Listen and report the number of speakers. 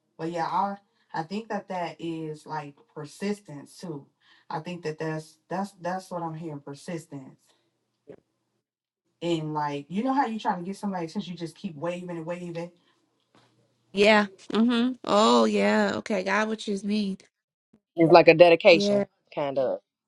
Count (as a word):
three